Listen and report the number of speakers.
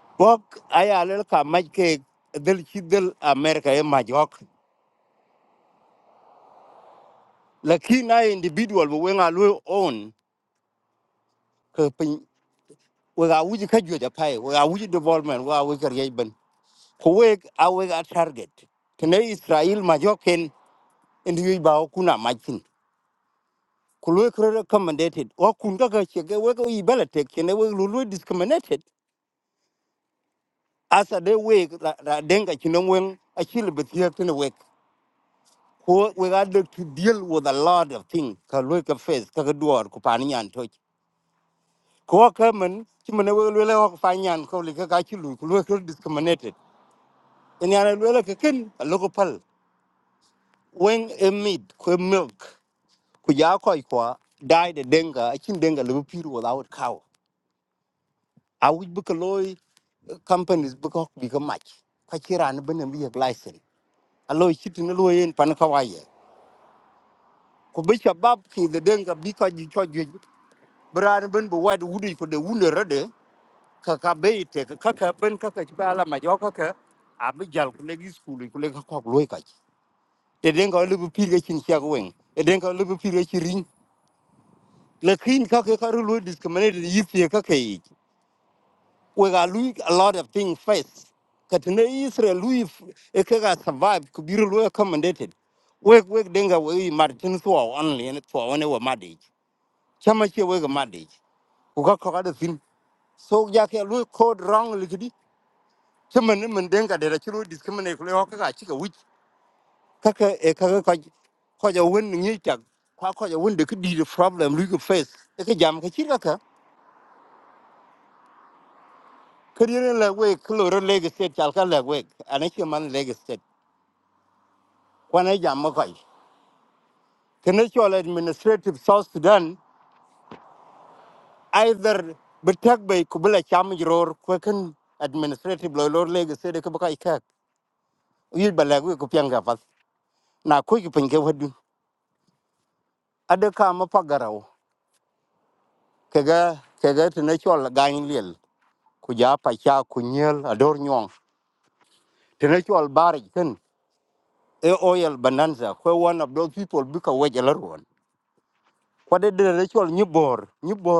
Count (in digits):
1